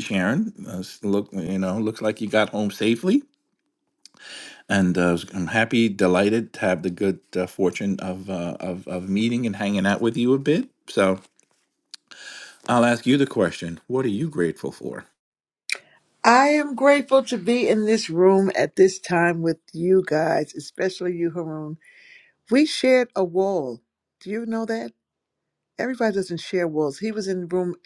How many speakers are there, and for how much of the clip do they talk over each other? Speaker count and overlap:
two, no overlap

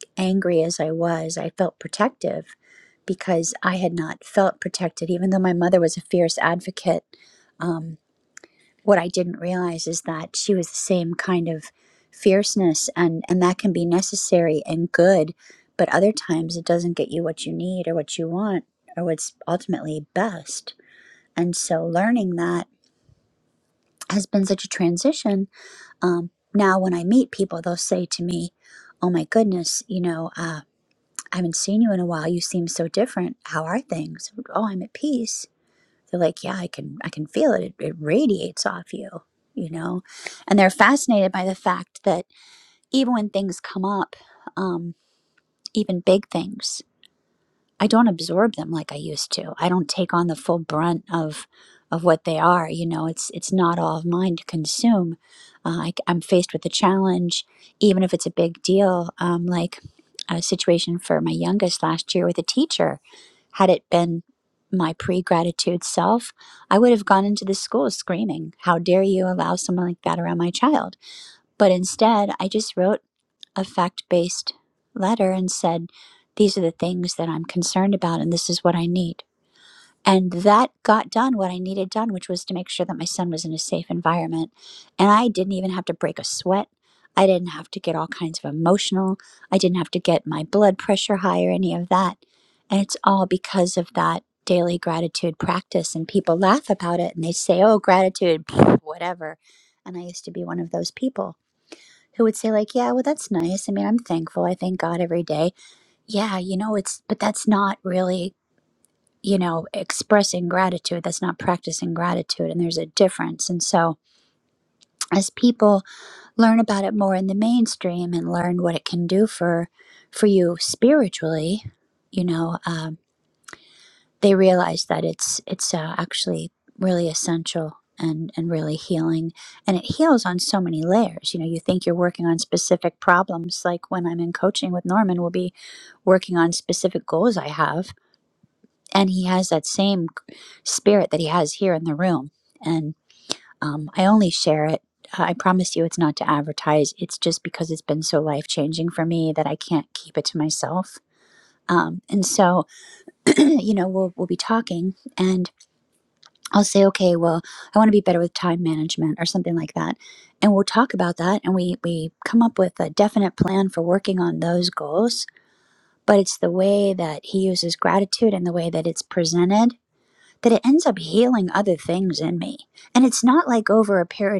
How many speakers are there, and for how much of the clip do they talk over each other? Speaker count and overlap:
one, no overlap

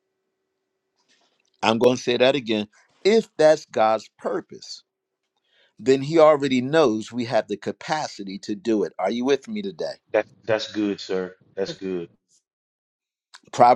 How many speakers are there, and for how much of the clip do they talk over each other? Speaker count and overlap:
two, no overlap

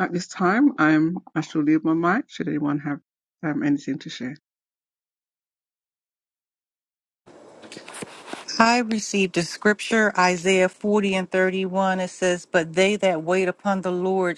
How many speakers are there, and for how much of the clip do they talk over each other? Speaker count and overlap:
two, no overlap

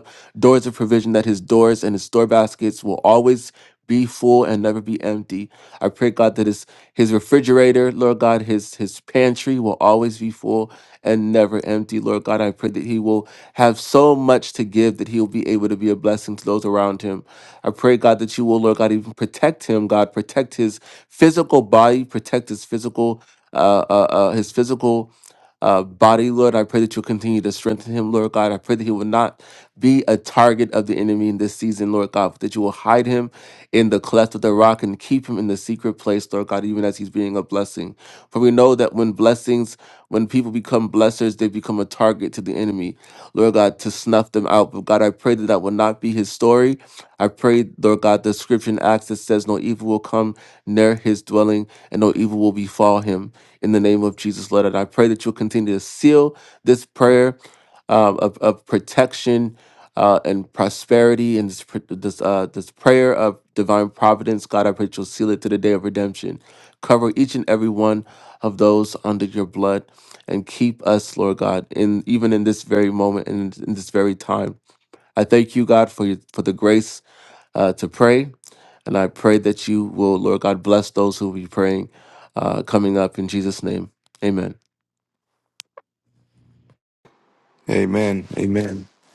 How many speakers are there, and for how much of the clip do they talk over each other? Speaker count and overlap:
two, no overlap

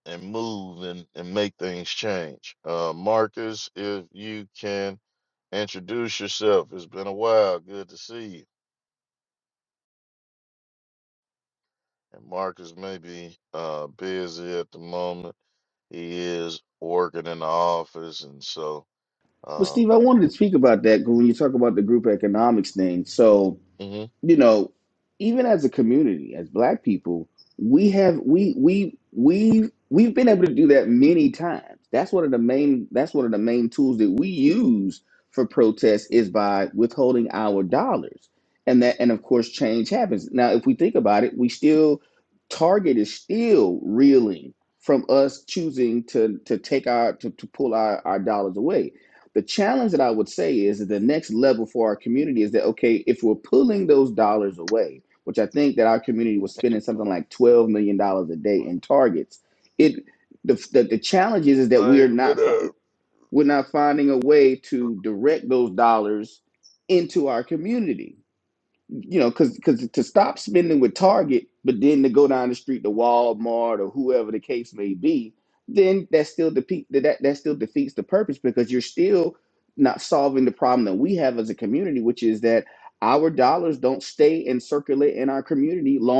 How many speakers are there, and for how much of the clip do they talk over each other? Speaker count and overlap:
two, about 1%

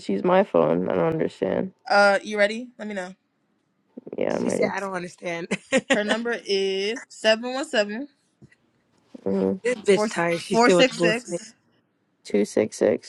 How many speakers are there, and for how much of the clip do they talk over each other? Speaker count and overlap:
three, about 2%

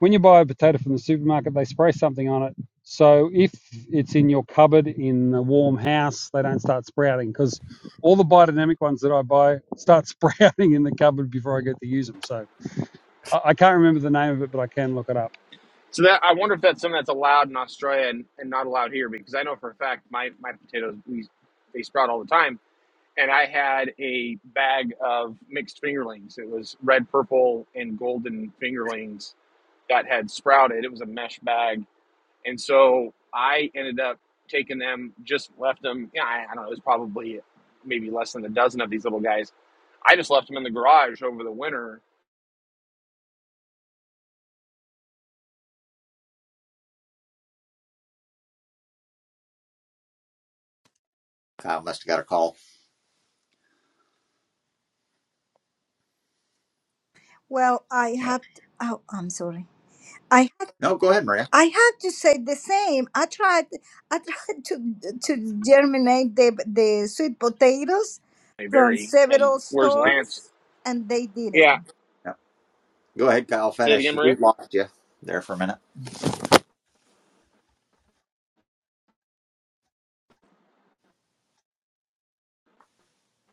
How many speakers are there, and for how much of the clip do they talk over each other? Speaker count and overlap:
four, about 3%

